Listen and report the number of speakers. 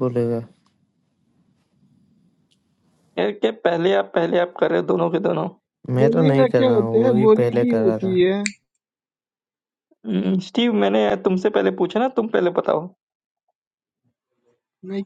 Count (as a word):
three